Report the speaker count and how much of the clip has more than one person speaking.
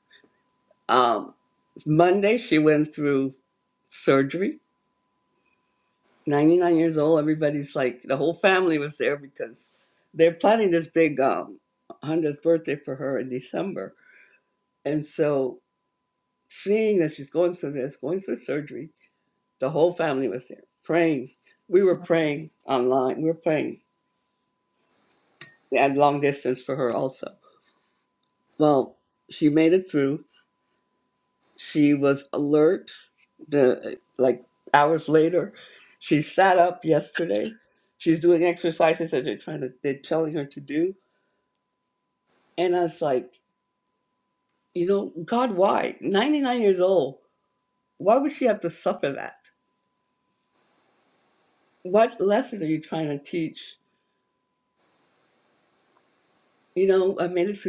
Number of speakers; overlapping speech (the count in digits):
1, no overlap